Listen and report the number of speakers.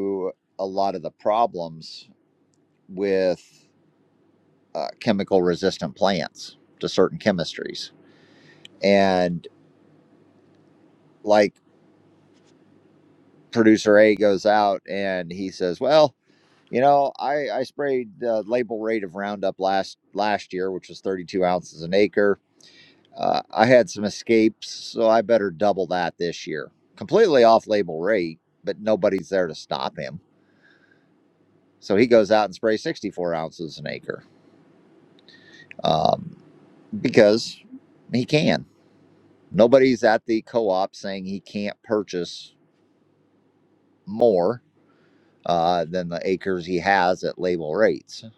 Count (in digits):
1